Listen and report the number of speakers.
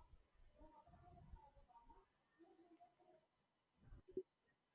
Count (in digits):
0